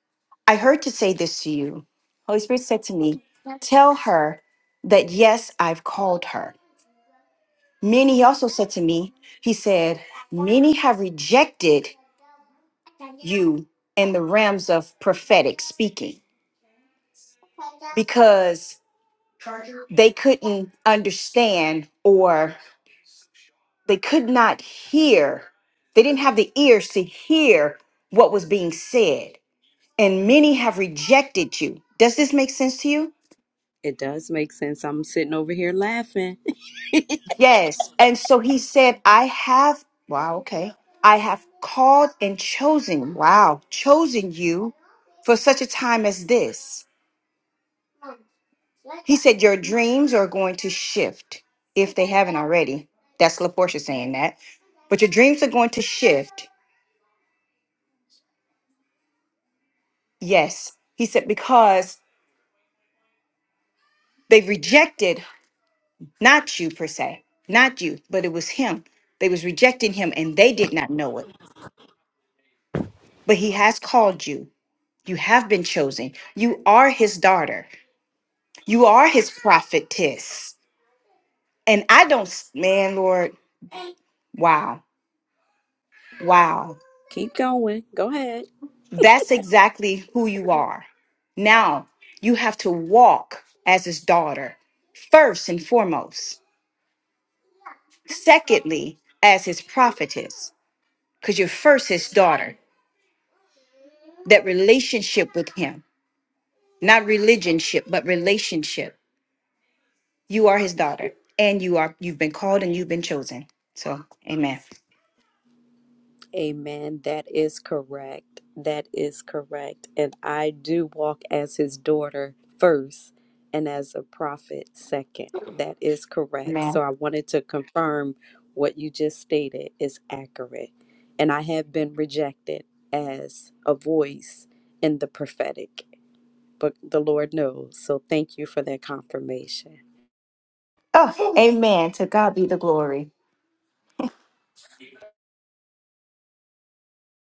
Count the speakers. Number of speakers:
2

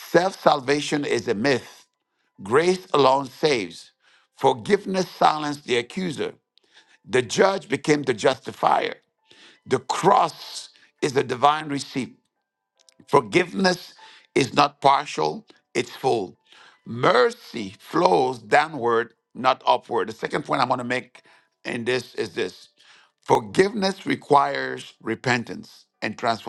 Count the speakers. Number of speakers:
1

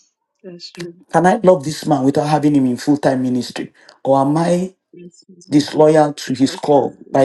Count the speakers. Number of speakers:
2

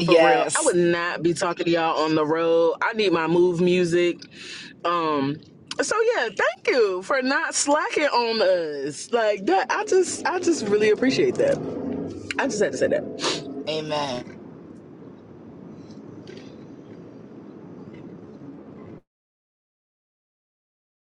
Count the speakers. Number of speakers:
2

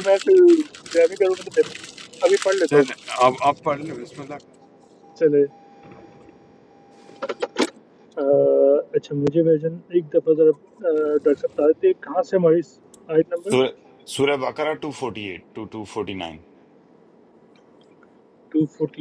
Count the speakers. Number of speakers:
3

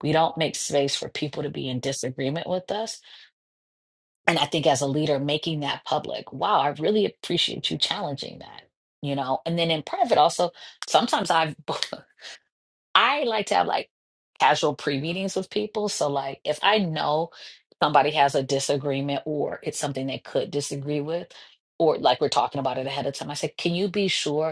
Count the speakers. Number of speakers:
1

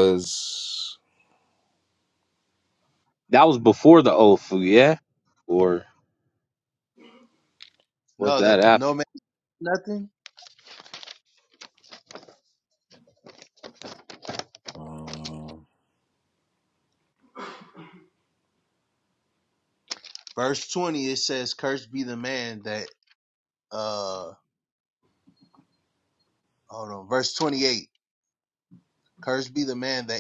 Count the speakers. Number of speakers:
3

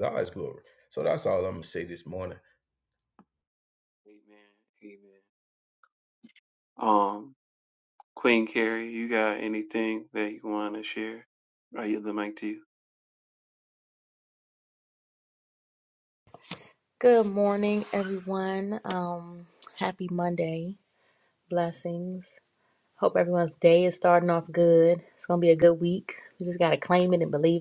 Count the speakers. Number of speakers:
3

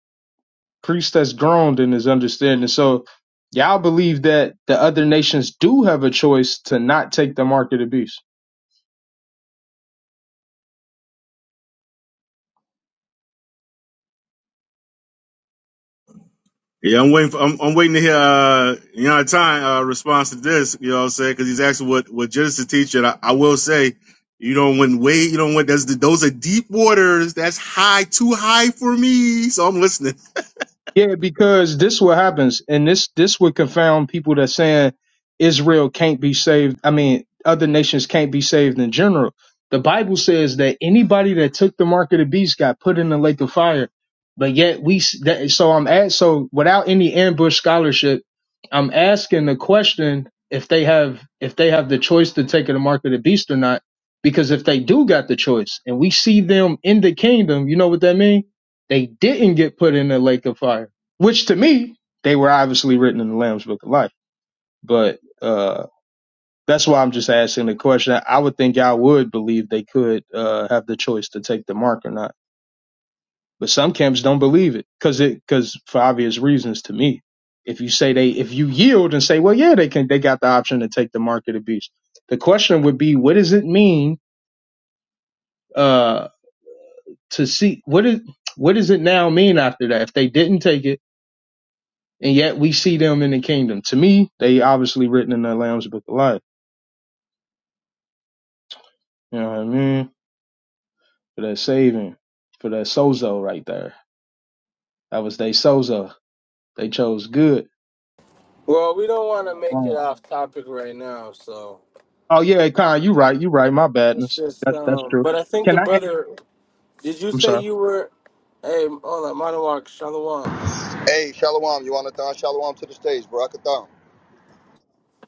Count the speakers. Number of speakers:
4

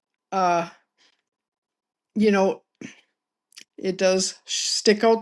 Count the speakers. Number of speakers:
1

